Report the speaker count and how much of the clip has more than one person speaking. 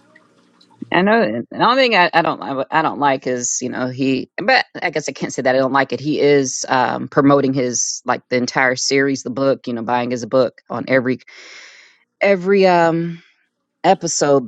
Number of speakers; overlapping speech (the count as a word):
one, no overlap